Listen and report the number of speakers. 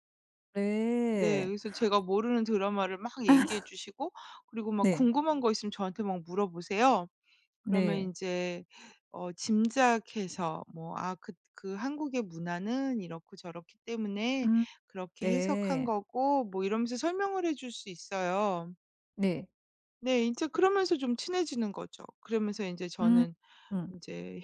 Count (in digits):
2